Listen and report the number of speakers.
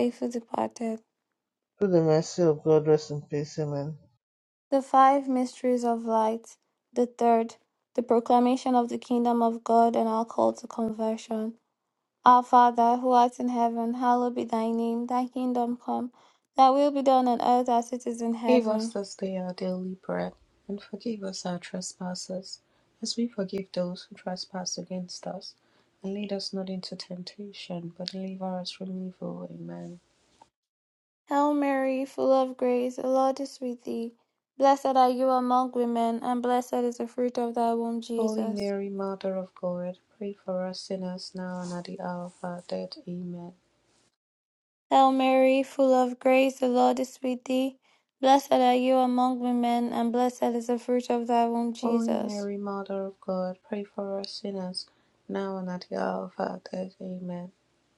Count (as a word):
three